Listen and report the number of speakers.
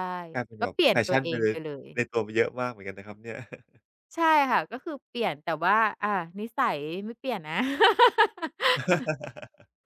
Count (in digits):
2